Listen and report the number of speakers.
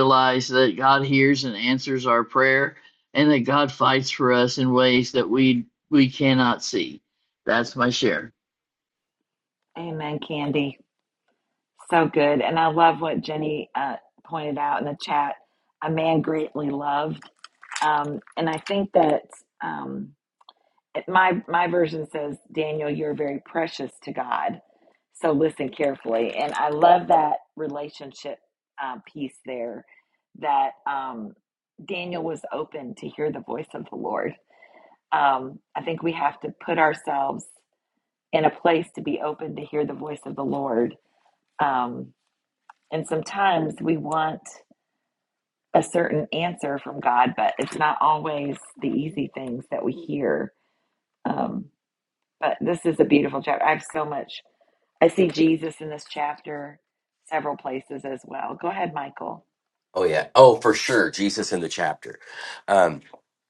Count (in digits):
3